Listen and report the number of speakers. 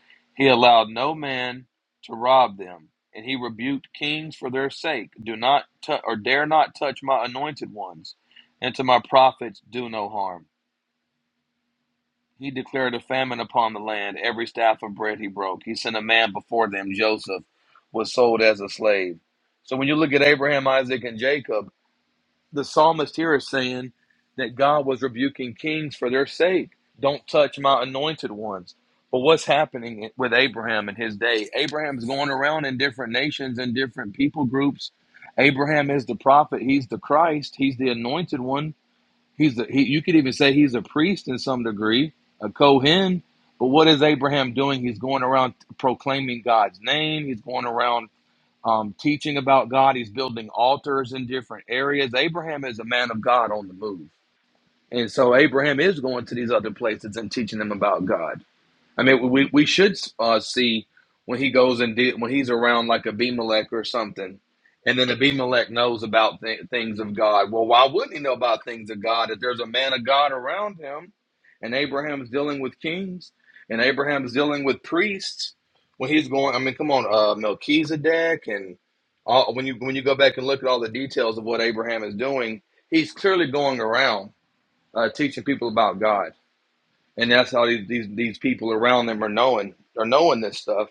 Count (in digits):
1